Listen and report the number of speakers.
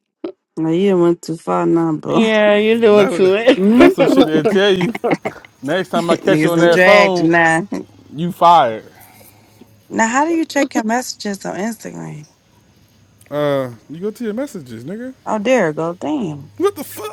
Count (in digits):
3